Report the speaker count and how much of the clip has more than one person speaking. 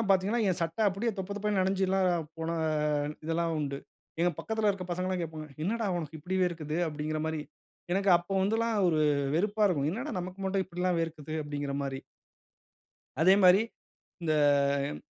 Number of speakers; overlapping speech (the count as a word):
one, no overlap